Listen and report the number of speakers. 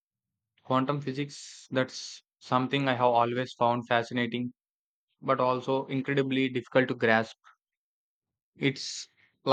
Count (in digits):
1